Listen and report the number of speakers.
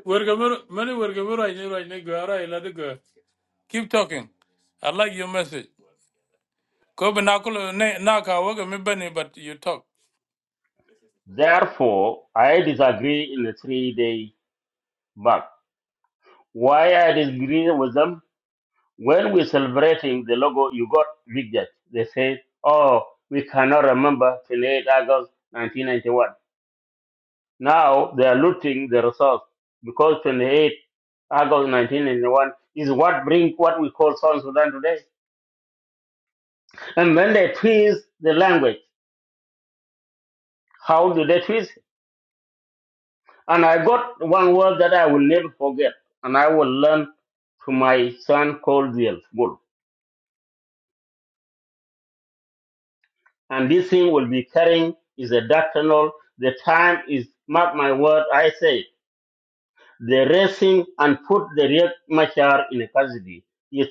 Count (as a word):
two